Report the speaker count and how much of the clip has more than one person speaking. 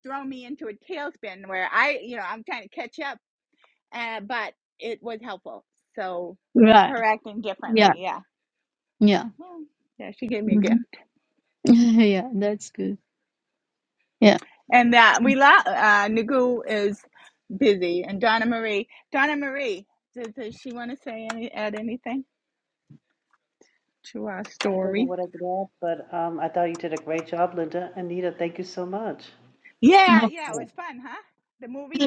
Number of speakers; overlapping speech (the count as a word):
three, about 5%